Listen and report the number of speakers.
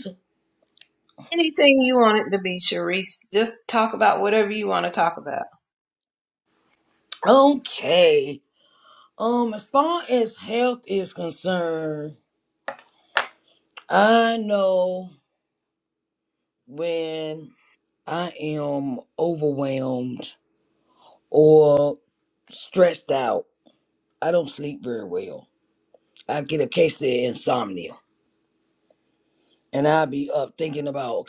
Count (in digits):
2